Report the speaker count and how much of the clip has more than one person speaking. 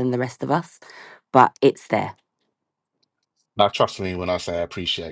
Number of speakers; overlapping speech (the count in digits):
2, no overlap